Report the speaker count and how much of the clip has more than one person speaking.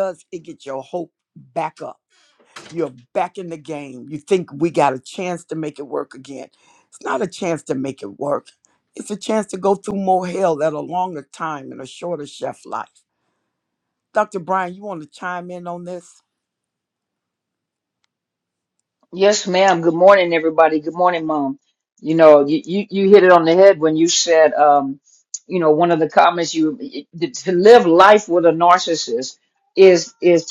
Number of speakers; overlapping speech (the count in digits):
2, no overlap